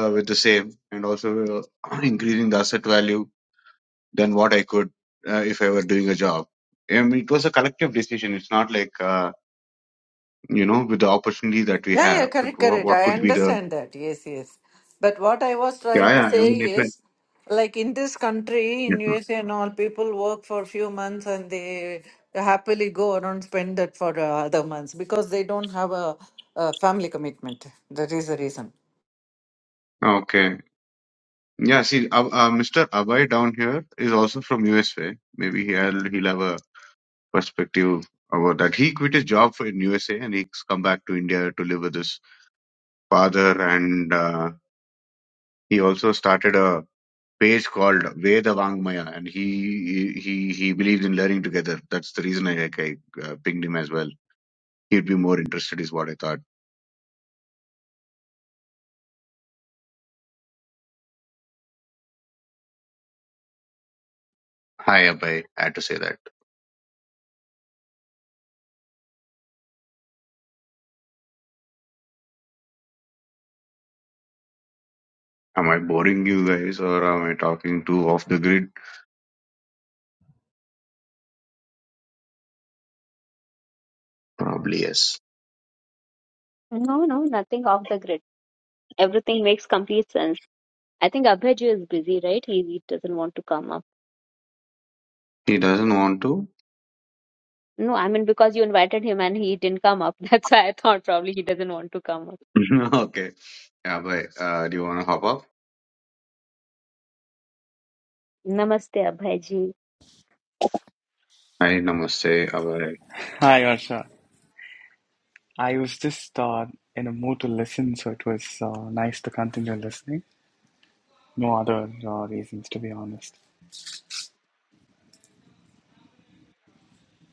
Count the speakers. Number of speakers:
four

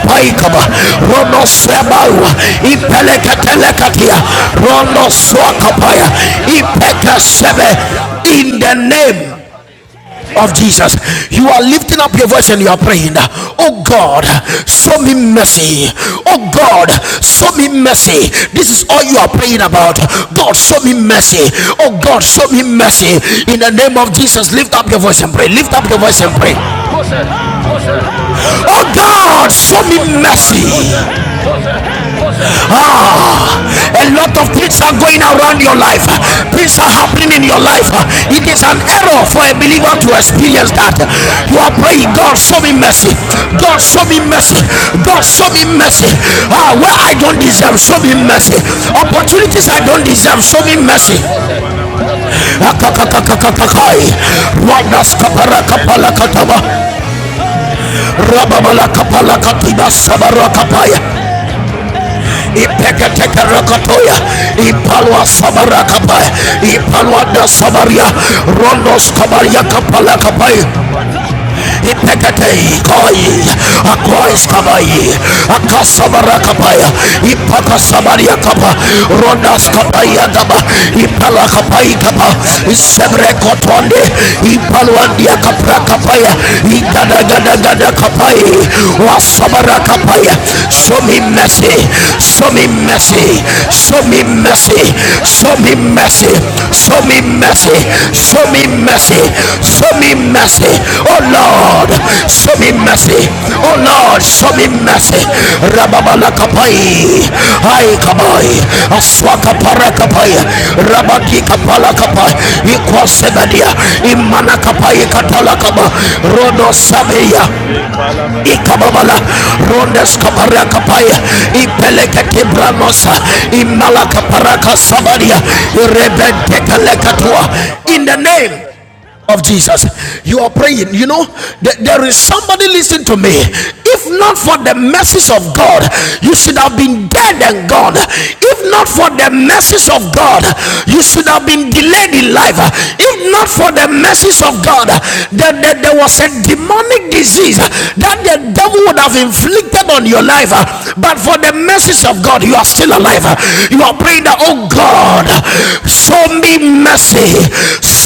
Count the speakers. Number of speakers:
two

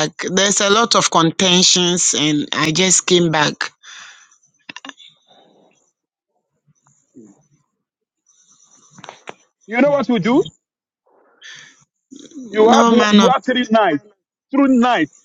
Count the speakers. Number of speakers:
two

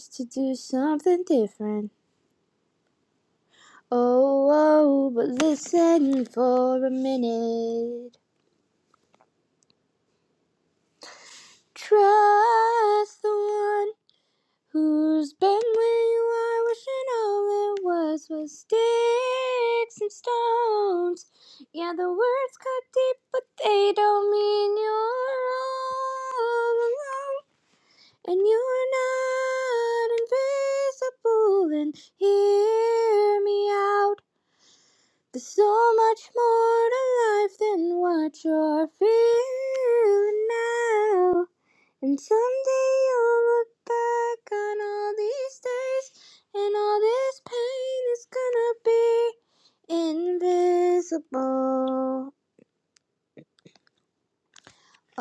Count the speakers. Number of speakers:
one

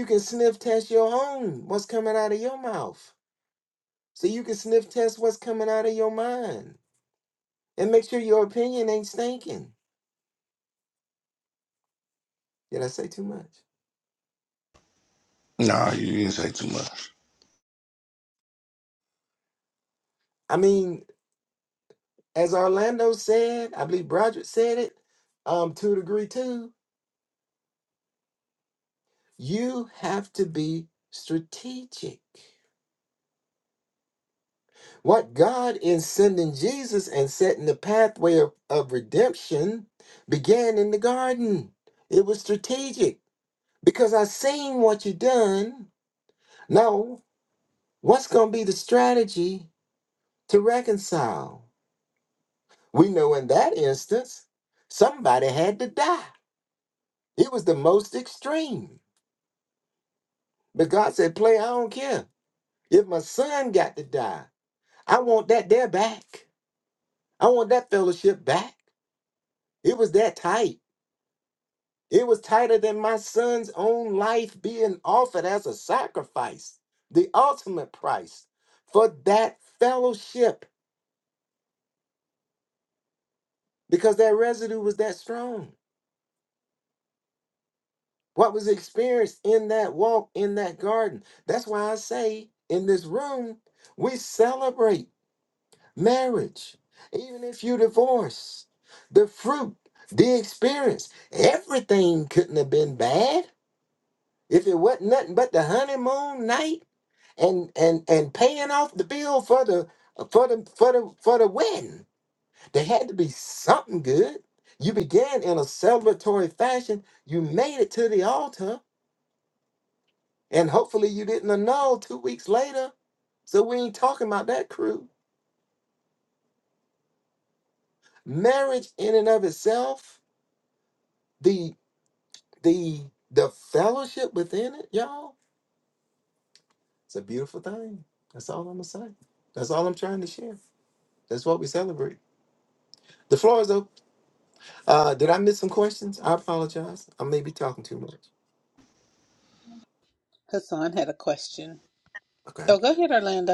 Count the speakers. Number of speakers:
three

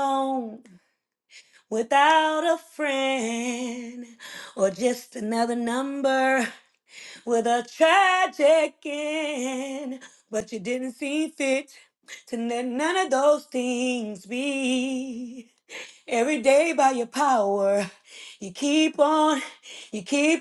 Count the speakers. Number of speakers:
one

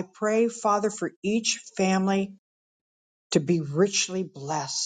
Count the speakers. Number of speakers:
one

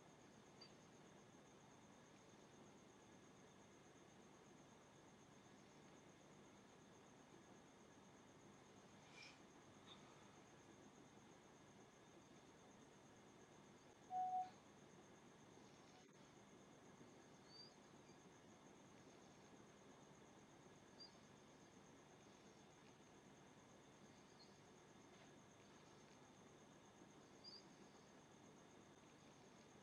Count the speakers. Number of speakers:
zero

